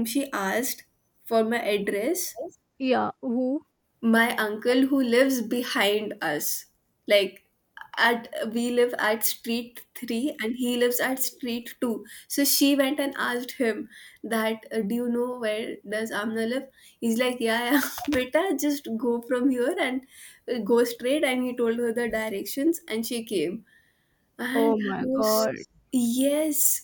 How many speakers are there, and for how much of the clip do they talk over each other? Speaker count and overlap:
two, about 3%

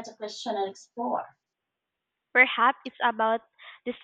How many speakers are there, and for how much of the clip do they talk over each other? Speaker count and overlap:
two, no overlap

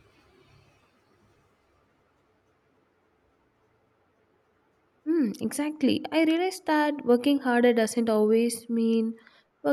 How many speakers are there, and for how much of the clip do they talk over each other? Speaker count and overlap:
one, no overlap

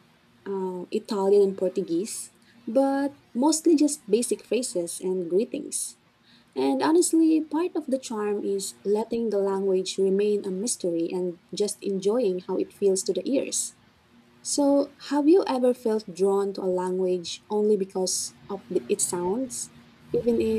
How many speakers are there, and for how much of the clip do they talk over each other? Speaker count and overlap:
one, no overlap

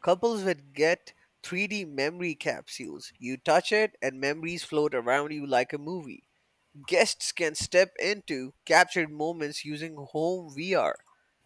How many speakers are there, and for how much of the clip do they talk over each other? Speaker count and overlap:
one, no overlap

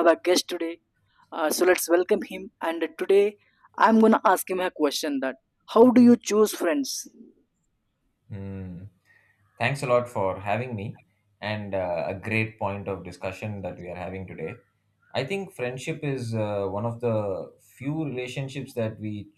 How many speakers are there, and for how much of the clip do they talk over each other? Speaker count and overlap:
two, no overlap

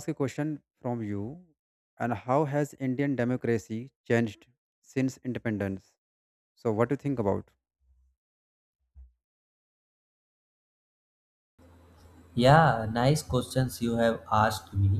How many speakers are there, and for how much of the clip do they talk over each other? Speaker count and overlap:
two, no overlap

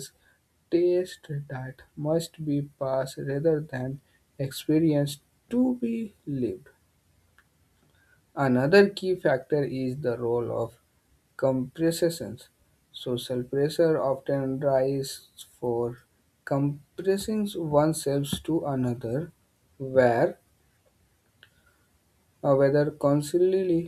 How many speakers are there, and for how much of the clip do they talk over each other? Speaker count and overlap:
one, no overlap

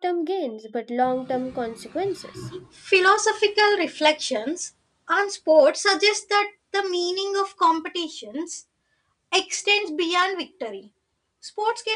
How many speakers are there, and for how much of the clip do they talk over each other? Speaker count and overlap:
two, no overlap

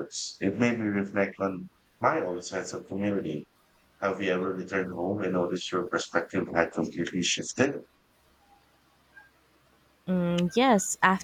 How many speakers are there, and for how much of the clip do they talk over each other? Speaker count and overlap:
two, no overlap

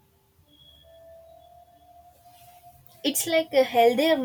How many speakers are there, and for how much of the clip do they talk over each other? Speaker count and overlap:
one, no overlap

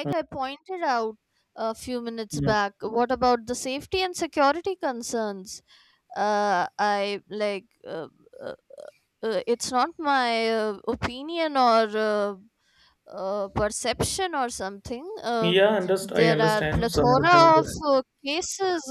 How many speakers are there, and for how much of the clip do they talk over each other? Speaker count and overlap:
two, about 11%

